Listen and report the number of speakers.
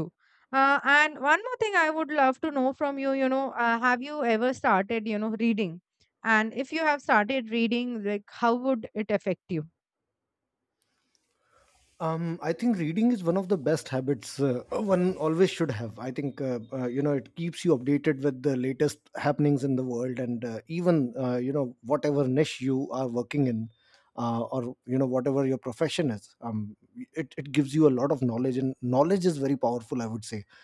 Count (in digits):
2